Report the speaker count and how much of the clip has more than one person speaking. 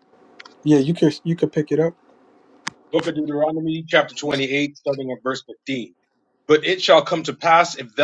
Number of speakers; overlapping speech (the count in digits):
2, no overlap